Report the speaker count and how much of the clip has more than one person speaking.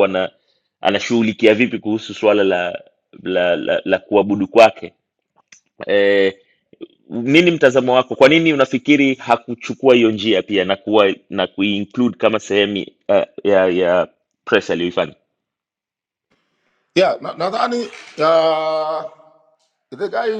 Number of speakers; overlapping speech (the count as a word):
two, no overlap